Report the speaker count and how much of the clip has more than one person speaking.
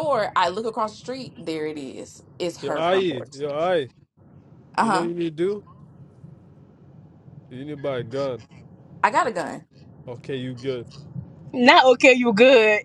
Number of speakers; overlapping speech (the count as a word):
three, about 7%